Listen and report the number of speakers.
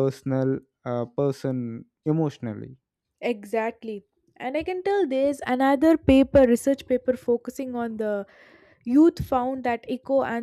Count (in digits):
2